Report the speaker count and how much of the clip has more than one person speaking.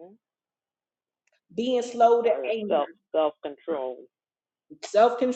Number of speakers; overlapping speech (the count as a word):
two, about 16%